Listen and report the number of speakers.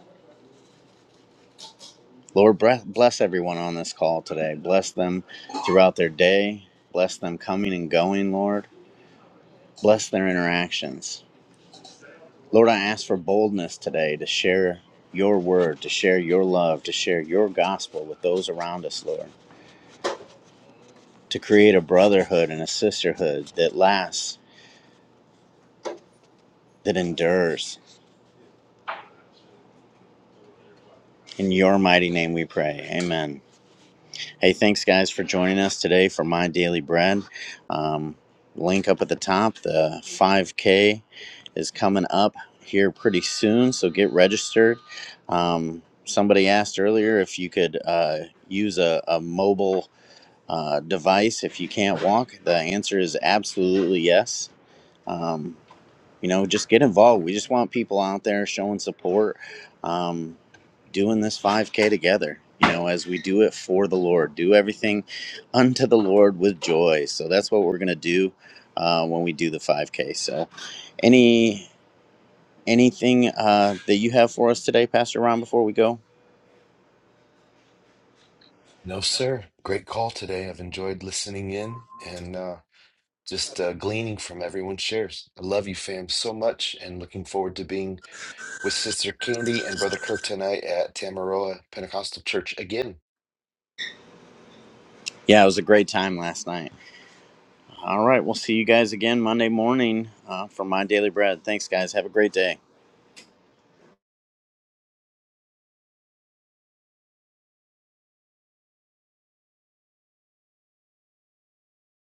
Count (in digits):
2